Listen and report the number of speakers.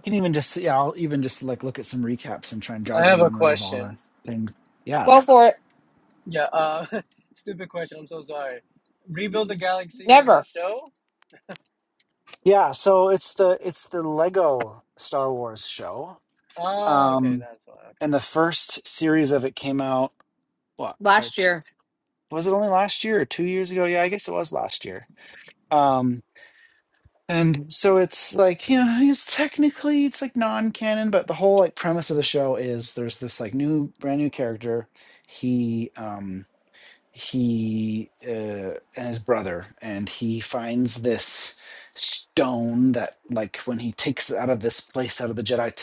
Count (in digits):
3